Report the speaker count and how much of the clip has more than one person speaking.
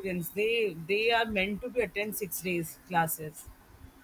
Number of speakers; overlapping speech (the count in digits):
1, no overlap